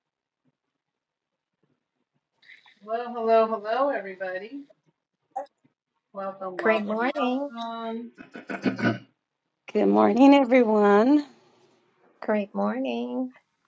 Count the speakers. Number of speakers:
three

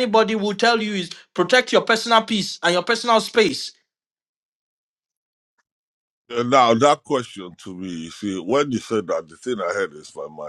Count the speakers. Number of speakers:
two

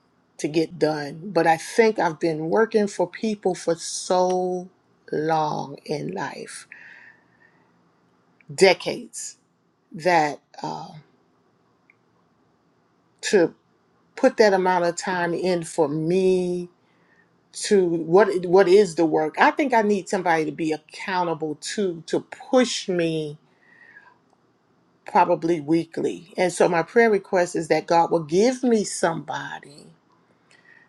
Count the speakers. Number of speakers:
one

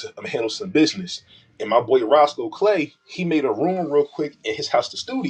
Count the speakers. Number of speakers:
one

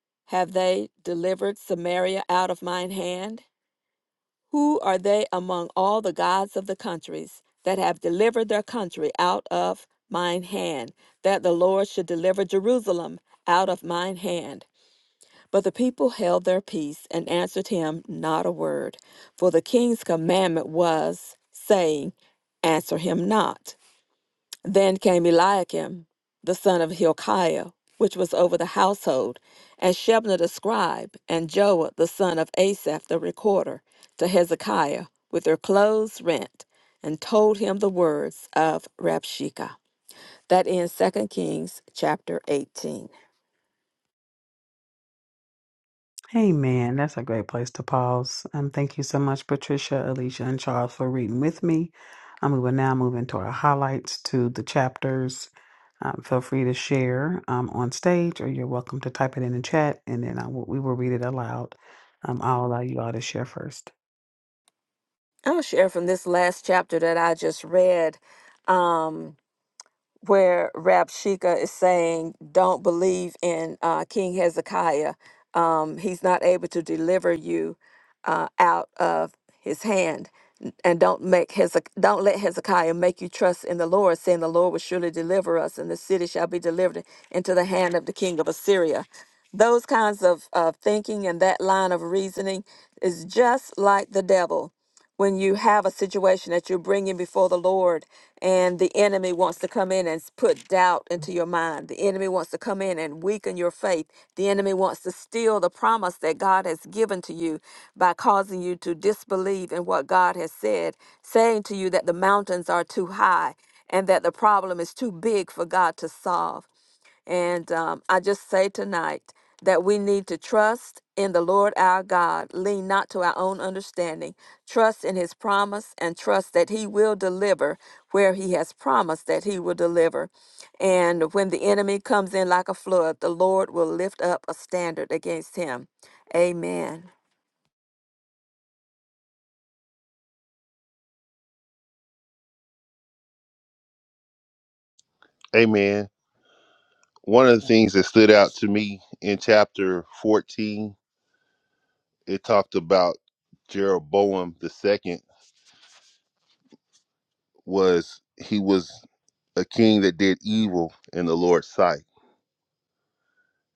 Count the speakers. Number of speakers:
three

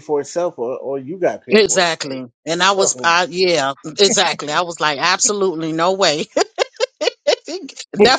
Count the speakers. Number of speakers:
two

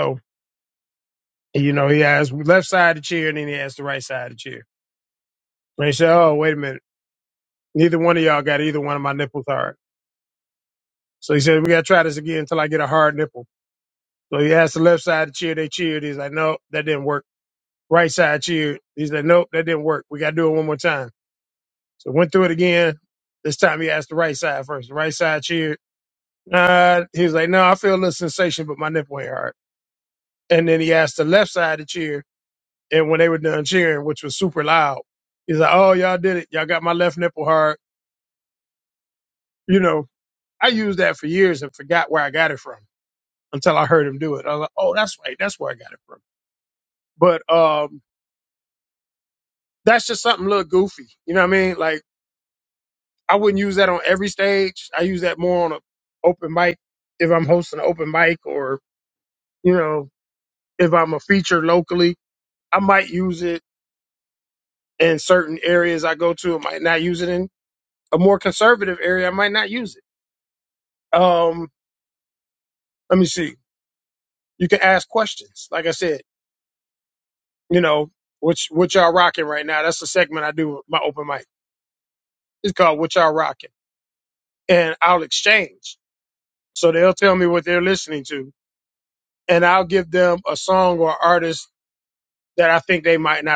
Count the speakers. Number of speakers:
one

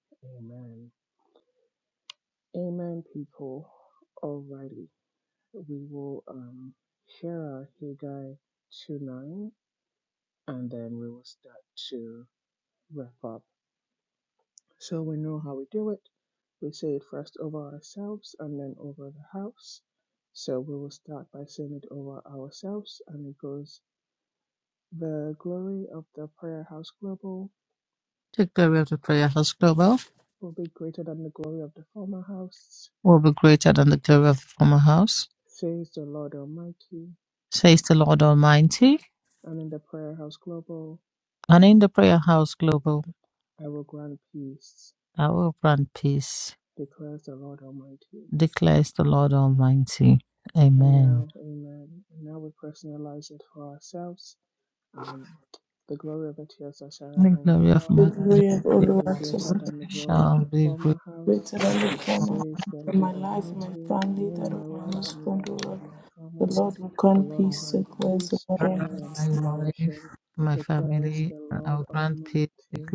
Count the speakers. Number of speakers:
three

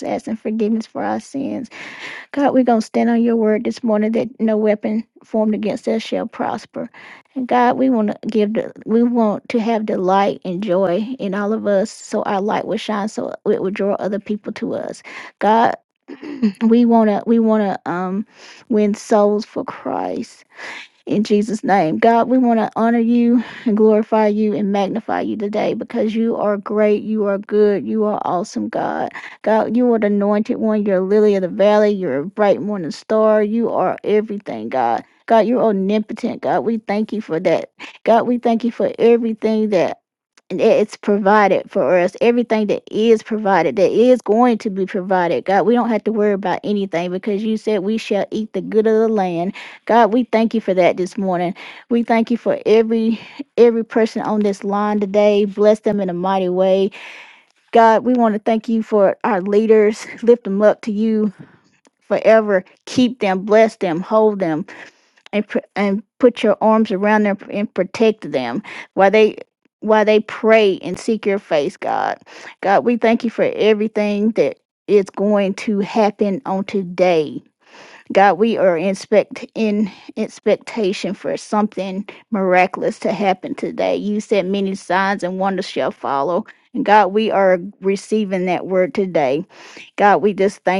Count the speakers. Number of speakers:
one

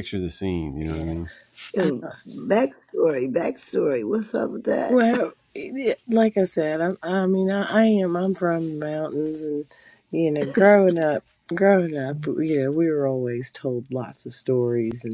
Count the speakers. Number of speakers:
three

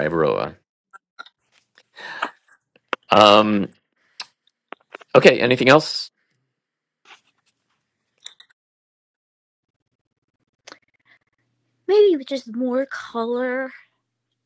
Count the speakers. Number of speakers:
two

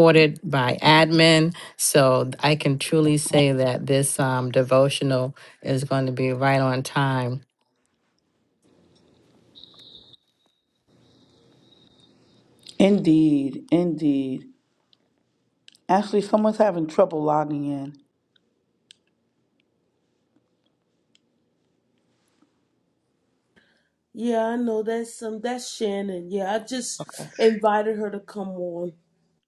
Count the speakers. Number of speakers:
three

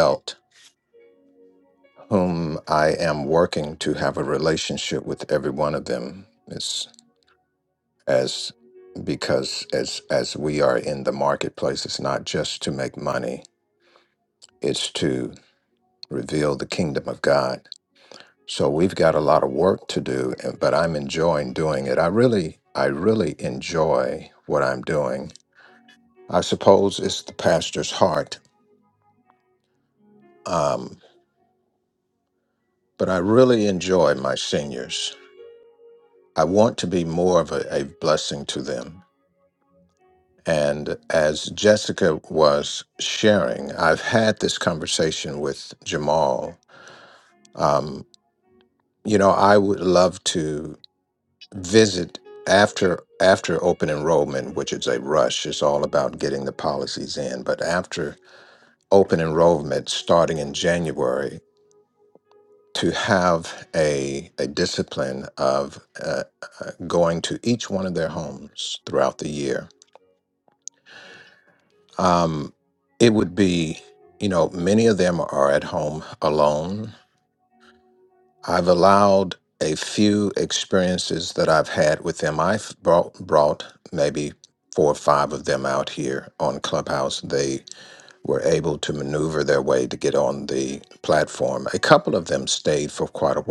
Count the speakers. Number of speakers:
one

